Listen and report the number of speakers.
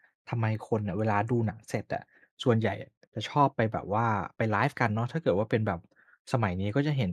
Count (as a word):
one